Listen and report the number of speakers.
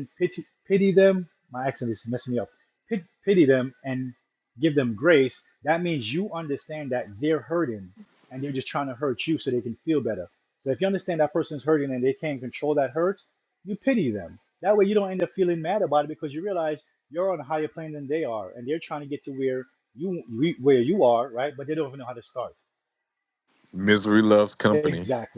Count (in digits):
2